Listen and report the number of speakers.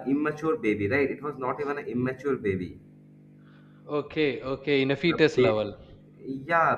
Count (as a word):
two